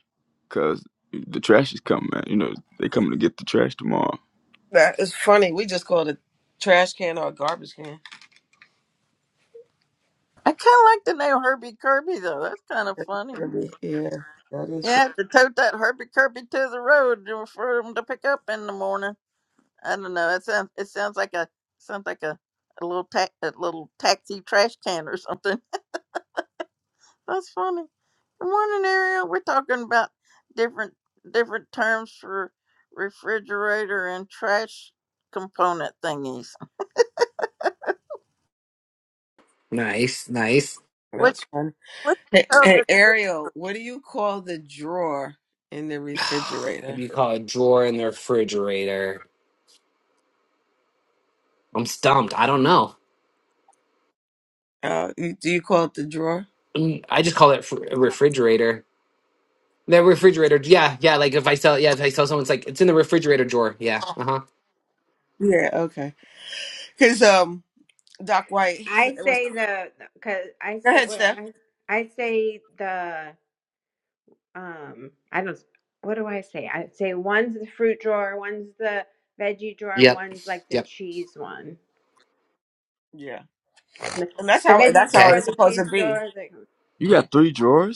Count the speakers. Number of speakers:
5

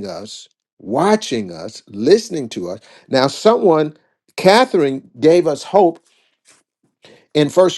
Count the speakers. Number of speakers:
1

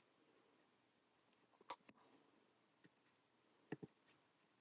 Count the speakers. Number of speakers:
0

